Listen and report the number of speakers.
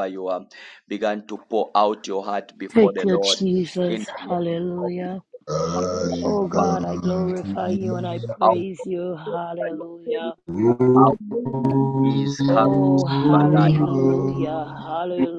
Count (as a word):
three